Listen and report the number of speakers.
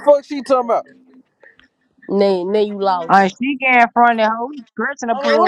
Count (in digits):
3